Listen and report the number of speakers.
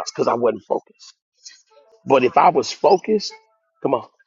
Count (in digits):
1